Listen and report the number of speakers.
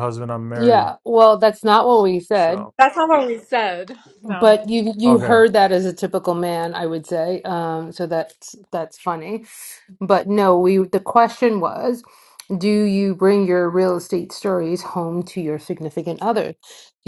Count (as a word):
three